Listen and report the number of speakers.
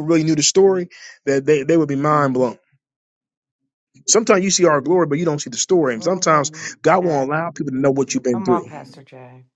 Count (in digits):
2